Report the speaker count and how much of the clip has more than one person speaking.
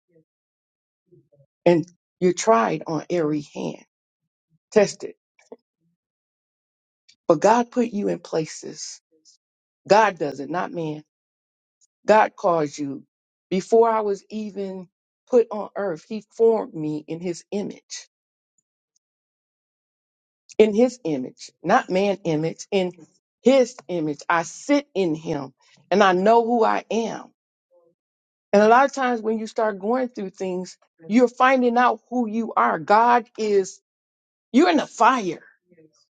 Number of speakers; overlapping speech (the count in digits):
1, no overlap